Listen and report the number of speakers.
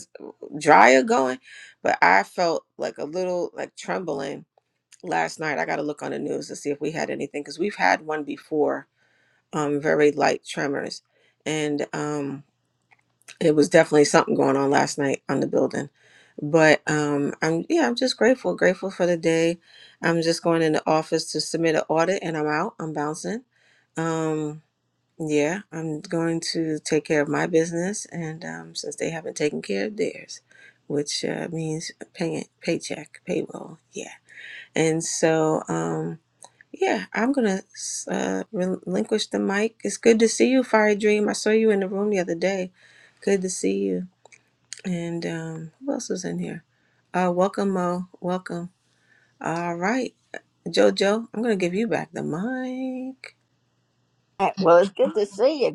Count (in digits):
2